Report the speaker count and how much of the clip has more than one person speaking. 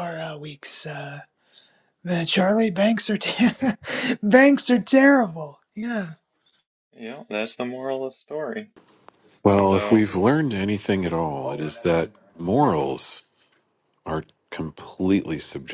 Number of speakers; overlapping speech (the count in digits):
3, about 2%